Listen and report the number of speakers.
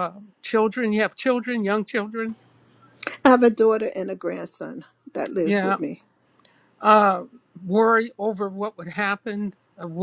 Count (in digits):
2